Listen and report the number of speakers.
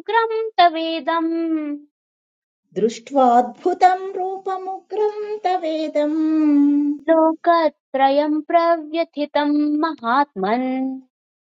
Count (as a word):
two